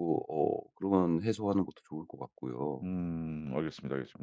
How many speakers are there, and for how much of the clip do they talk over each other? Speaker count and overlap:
2, no overlap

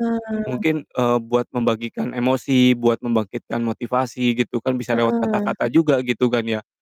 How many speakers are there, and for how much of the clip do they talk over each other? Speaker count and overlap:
2, about 12%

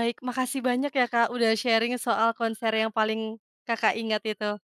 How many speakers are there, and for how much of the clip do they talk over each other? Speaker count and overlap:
1, no overlap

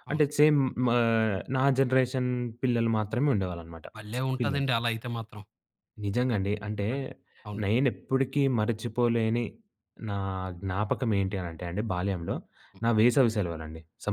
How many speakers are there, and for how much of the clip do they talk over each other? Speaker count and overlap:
2, about 3%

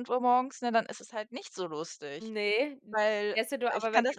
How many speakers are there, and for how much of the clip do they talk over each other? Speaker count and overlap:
2, about 11%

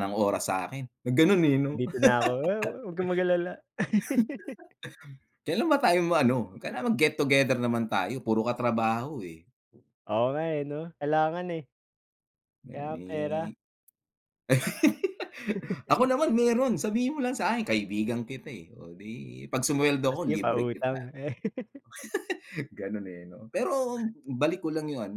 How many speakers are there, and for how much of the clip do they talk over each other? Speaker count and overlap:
2, about 7%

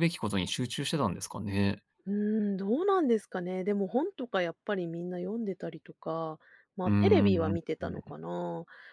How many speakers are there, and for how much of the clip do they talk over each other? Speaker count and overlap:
2, about 8%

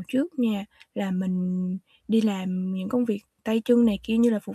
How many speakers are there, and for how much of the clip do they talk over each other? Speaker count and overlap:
1, no overlap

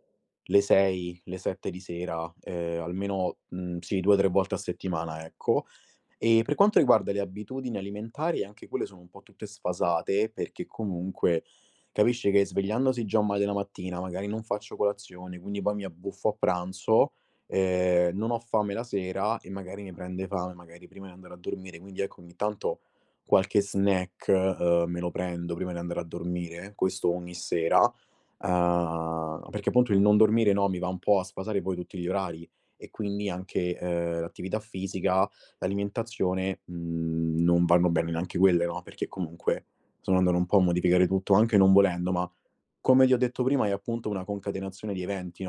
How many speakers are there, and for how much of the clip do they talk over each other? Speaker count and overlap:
1, no overlap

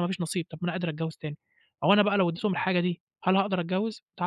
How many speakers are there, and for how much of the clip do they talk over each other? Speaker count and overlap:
1, no overlap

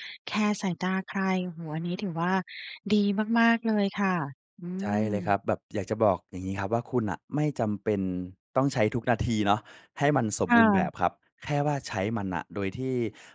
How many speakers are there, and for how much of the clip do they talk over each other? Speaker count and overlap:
2, about 5%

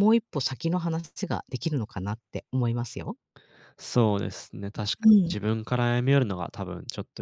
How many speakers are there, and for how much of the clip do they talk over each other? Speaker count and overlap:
2, about 4%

